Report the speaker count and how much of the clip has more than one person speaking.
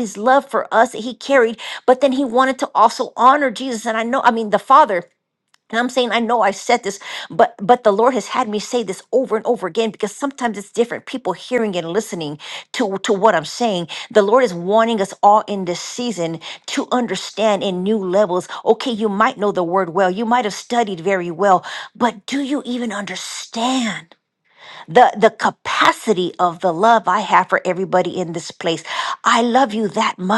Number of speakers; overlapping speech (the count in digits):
1, no overlap